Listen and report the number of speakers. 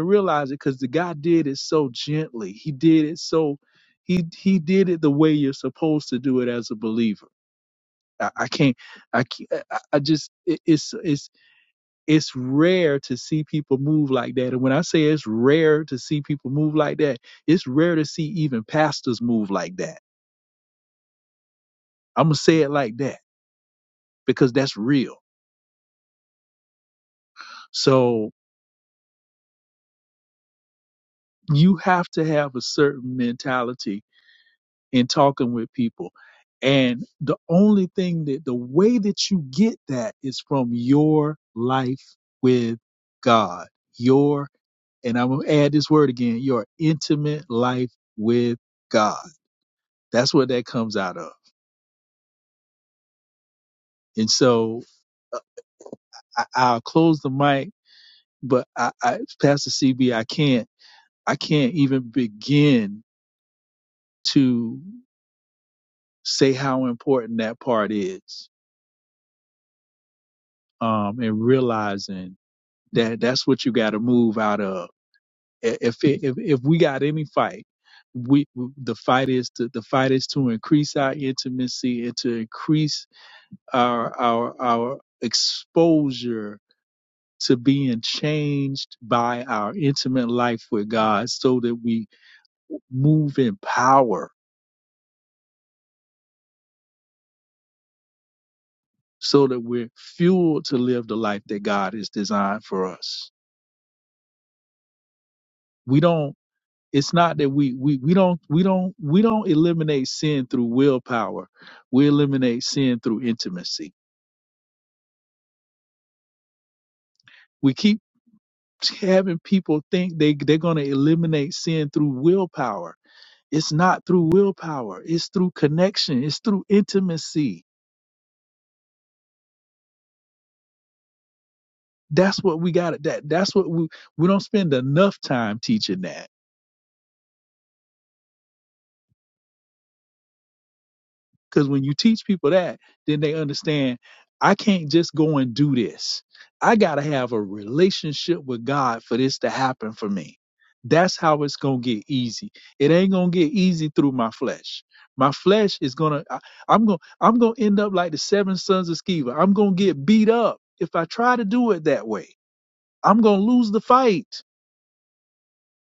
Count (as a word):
one